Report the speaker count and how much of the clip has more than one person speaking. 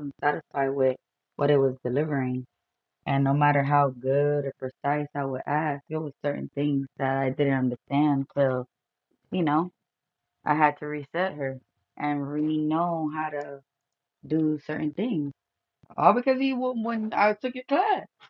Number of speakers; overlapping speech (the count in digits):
1, no overlap